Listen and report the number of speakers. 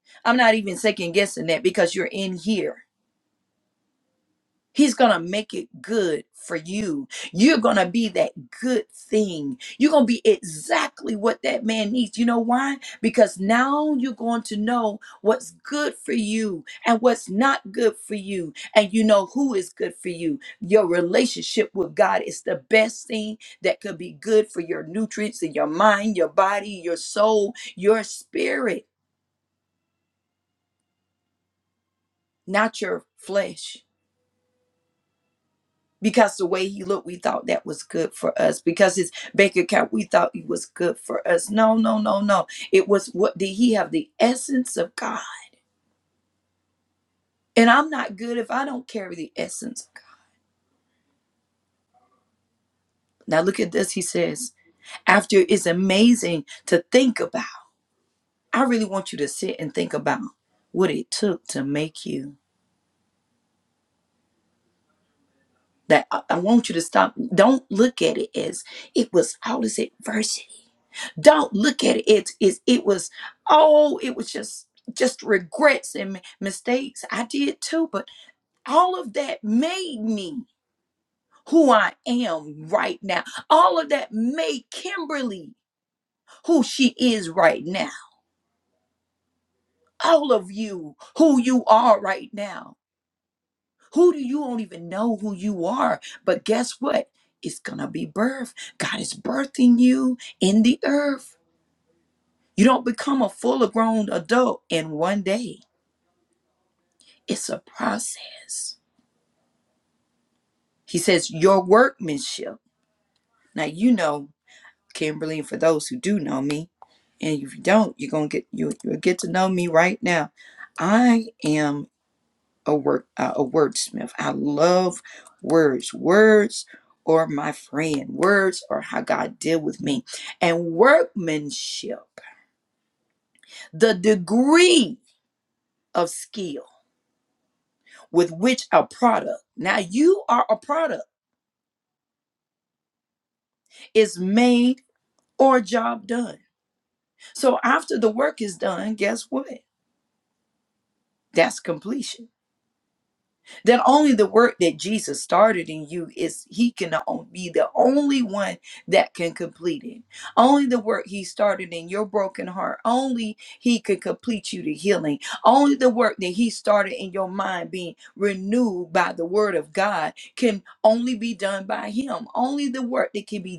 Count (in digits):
1